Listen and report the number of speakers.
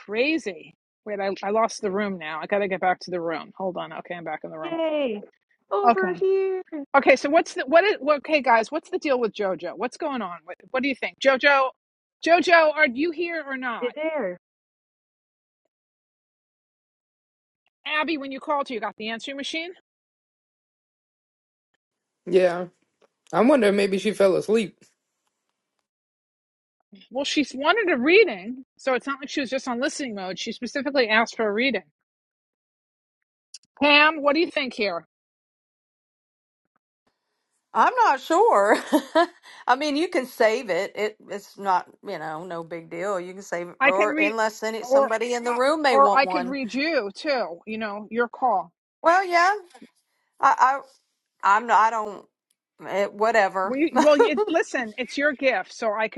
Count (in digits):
4